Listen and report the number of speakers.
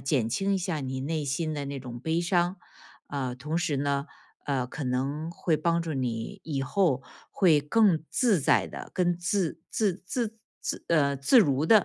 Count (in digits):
1